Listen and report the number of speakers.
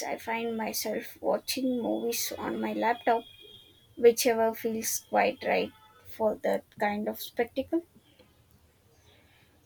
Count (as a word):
one